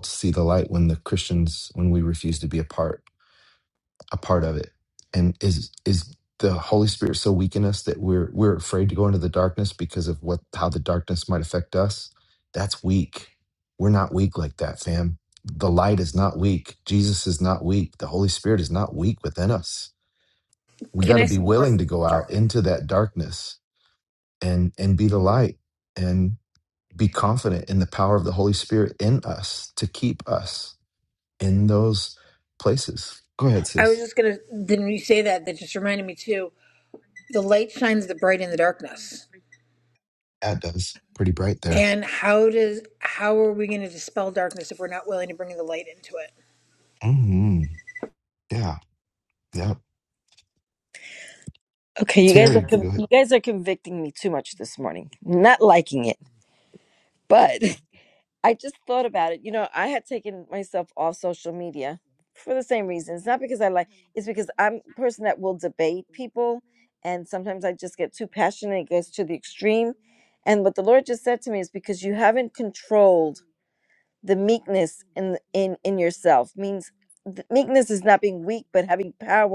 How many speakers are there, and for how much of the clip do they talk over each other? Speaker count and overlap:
3, about 3%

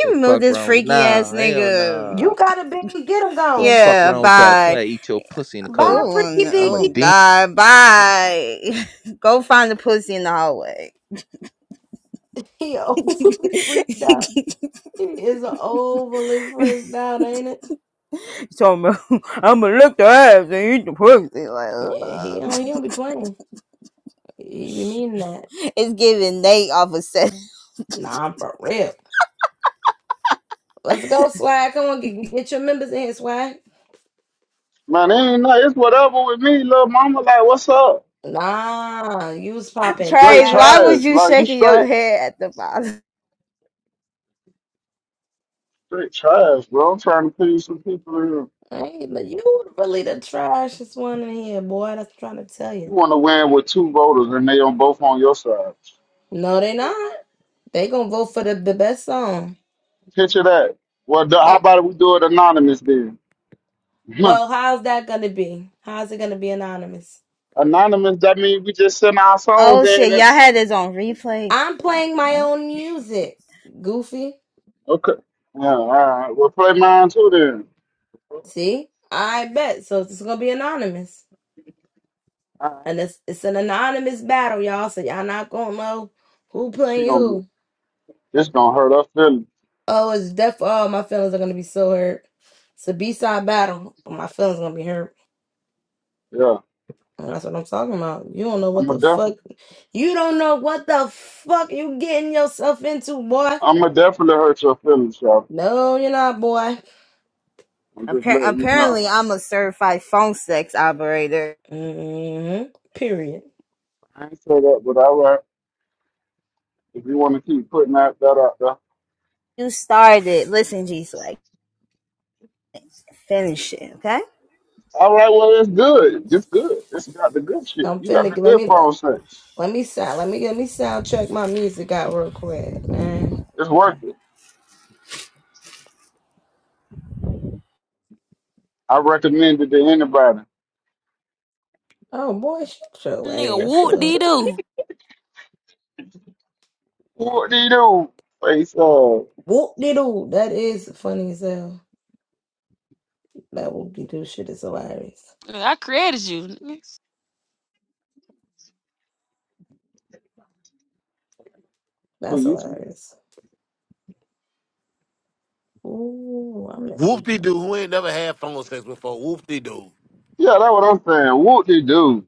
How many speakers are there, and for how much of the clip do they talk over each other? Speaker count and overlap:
6, about 7%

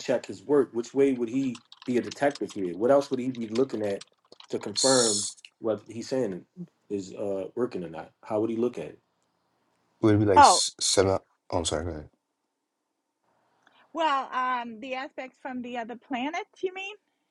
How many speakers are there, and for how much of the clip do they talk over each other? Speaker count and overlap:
3, about 4%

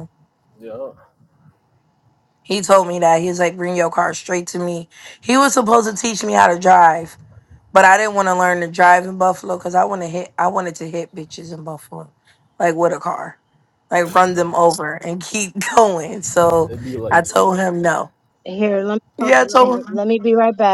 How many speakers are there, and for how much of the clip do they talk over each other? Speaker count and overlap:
3, about 6%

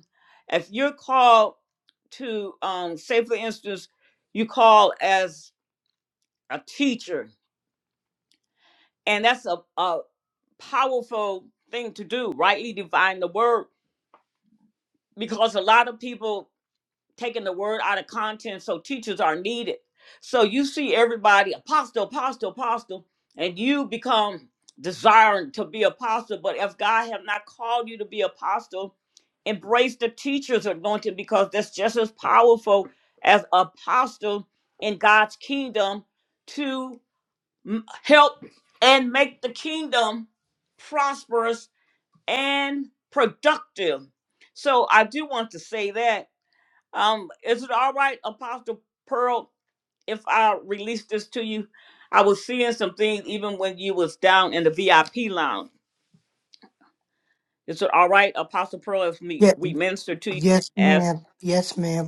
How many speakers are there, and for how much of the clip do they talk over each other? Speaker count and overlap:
2, about 1%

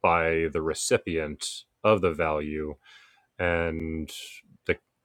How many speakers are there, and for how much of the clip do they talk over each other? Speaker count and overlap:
1, no overlap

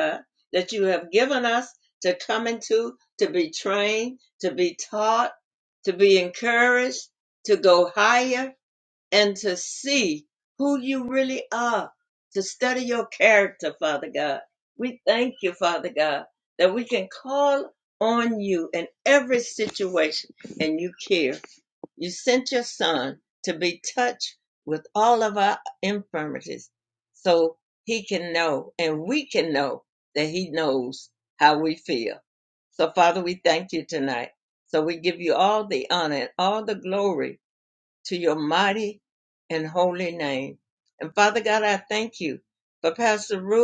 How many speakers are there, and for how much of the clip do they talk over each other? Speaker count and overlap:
1, no overlap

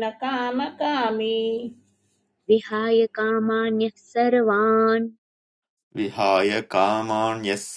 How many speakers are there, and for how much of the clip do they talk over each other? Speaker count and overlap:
3, no overlap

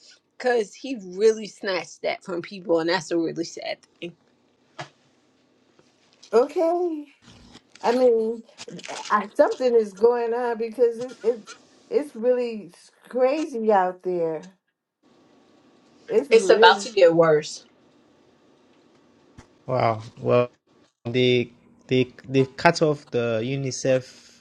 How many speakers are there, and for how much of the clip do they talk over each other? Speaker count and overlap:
3, about 2%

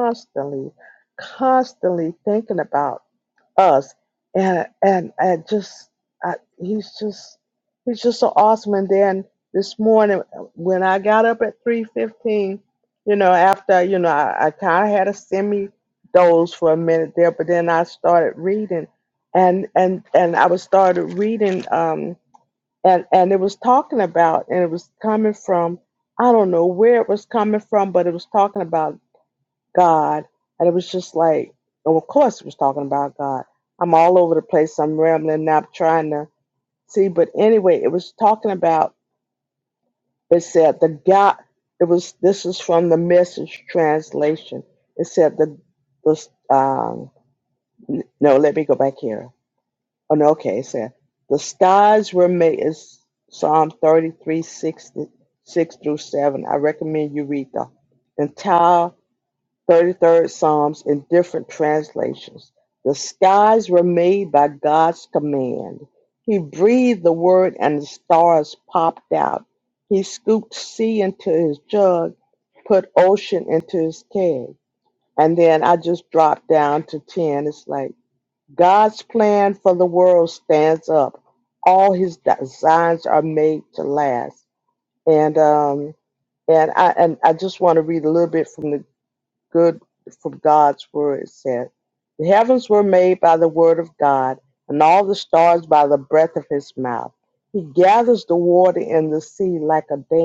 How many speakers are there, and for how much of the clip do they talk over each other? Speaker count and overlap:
1, no overlap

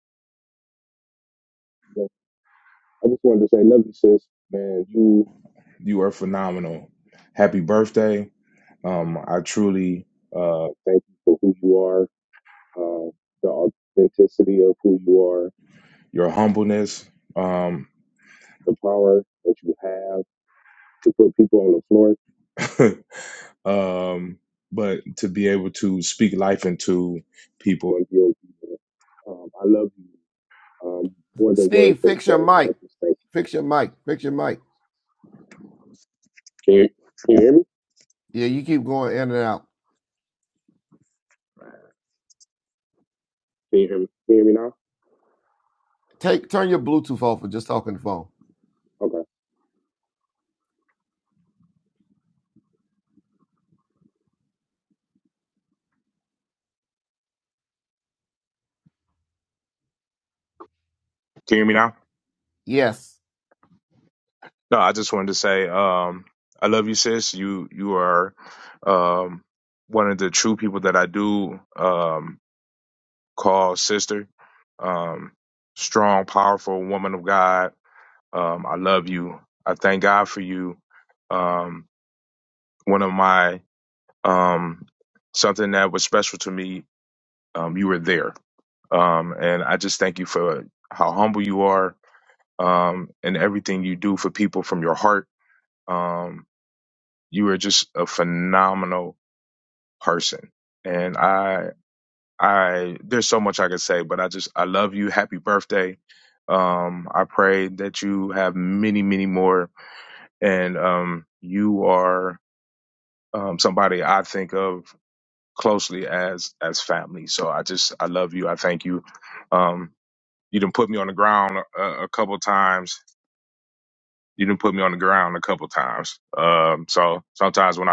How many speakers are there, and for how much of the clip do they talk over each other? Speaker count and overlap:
2, about 1%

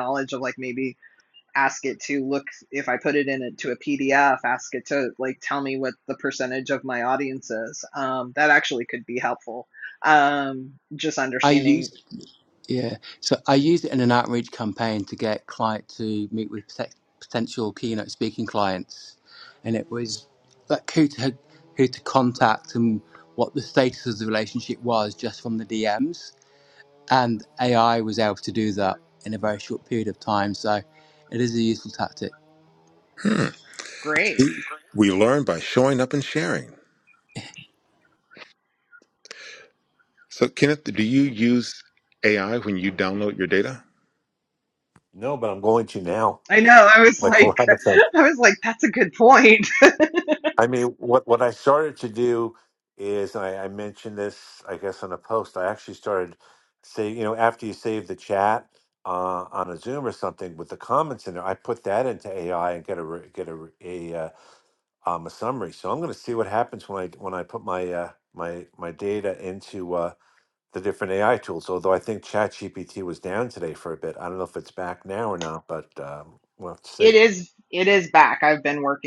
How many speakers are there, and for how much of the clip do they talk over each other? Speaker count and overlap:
4, about 1%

